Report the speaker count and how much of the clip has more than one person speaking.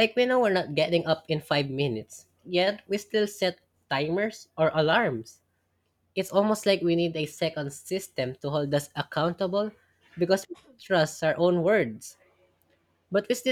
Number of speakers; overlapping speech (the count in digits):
1, no overlap